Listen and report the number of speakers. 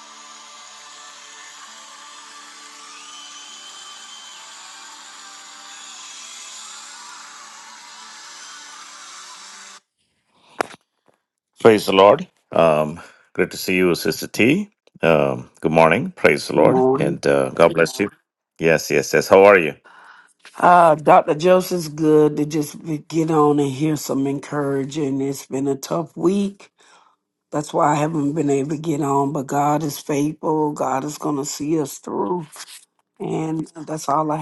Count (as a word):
two